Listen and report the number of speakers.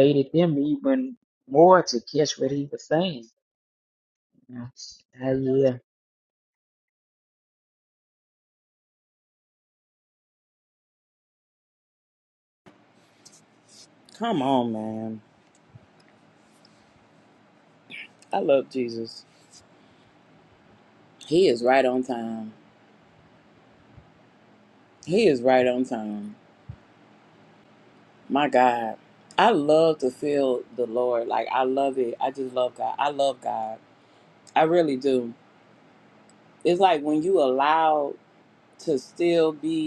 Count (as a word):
two